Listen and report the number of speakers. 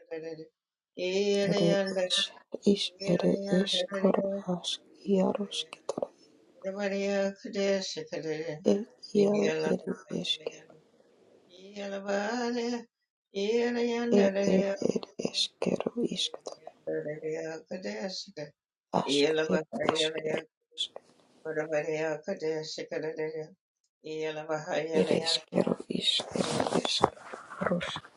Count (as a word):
two